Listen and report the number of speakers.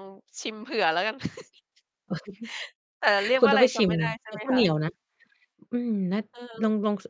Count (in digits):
2